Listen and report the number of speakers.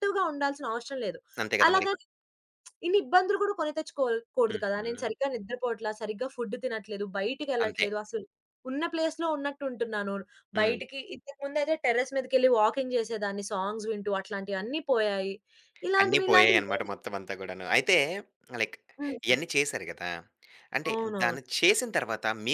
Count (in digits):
2